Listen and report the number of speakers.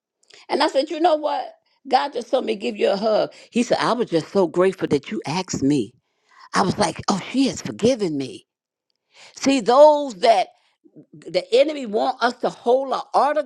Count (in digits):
1